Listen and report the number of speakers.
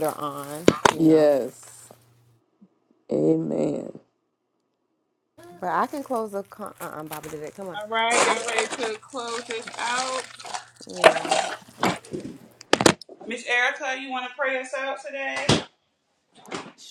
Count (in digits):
3